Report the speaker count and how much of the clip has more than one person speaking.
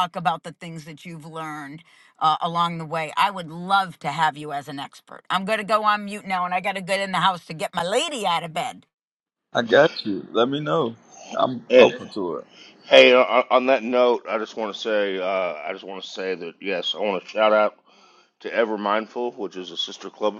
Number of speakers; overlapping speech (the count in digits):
3, about 1%